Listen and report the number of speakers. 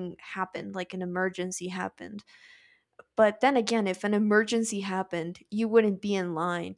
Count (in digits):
1